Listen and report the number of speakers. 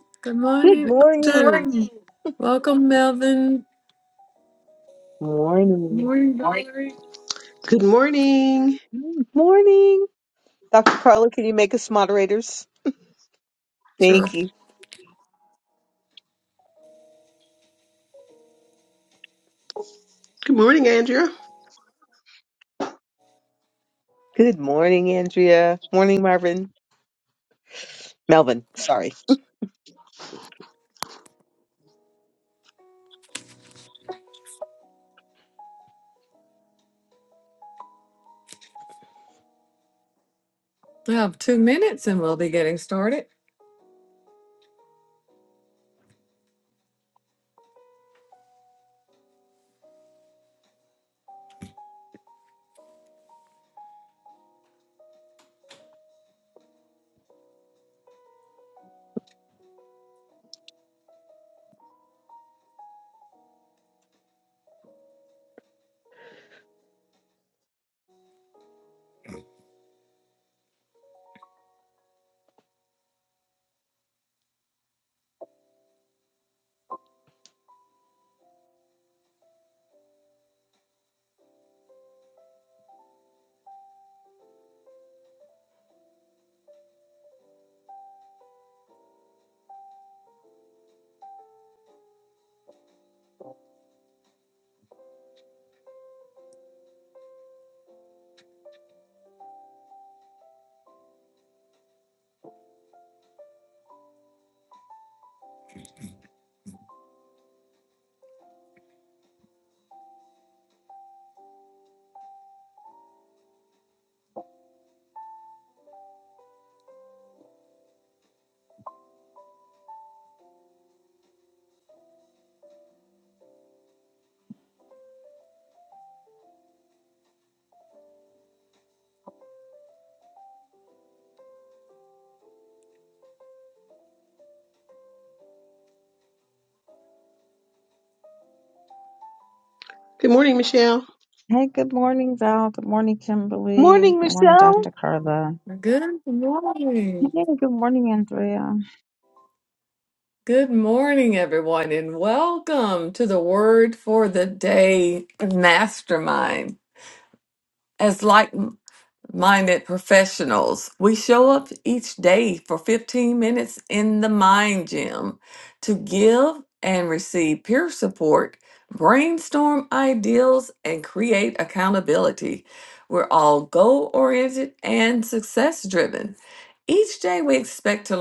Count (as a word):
four